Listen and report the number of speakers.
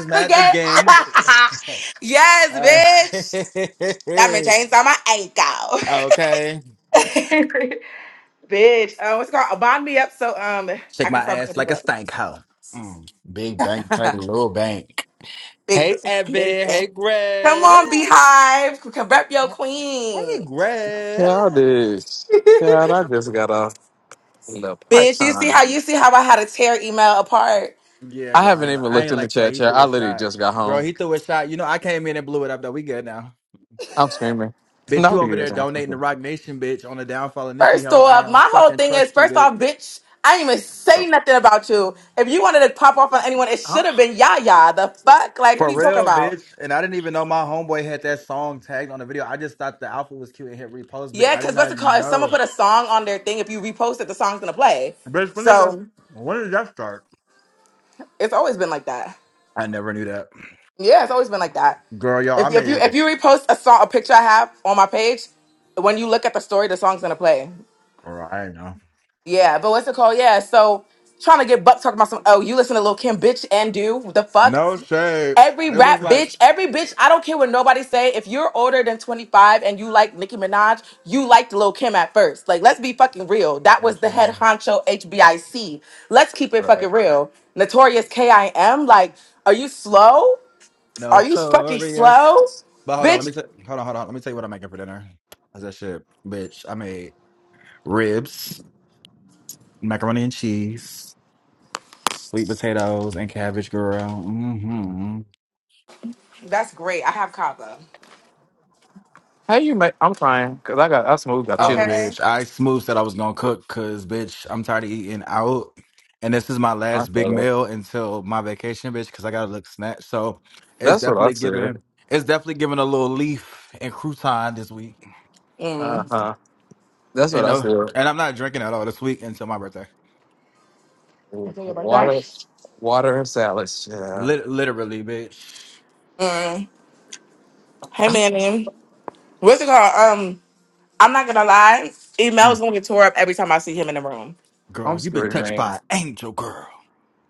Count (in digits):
3